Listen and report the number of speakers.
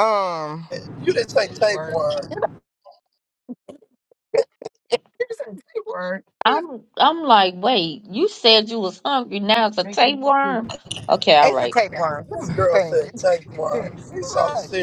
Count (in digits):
3